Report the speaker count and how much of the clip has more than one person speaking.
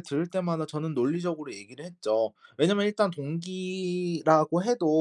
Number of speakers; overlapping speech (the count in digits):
1, no overlap